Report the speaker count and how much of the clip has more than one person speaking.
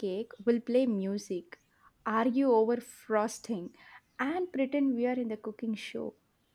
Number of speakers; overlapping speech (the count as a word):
one, no overlap